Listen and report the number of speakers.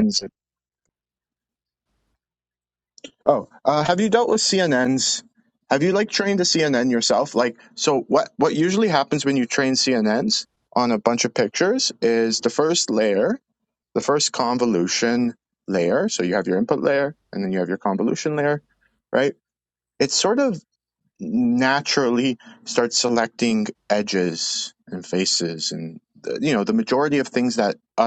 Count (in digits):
1